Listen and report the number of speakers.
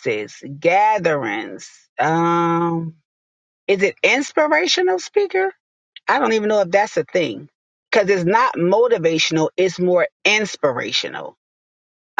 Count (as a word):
one